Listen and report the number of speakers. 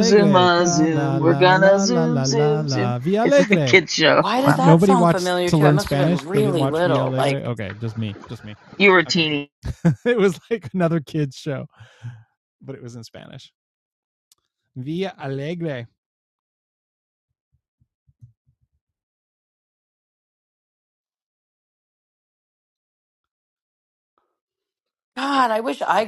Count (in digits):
3